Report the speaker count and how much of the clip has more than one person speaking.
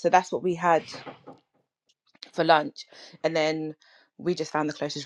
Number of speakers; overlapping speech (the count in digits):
1, no overlap